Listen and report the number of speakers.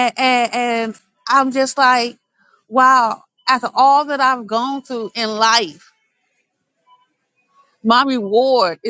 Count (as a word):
one